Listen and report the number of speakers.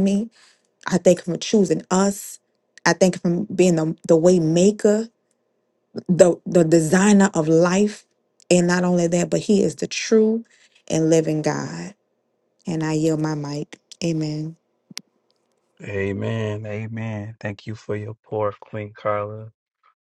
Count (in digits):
2